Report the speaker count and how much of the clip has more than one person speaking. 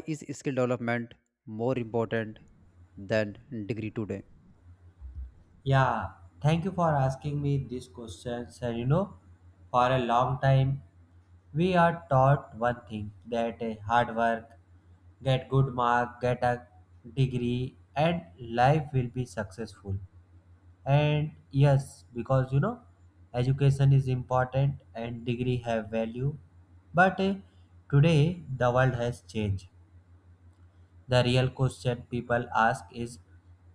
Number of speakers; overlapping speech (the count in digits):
2, no overlap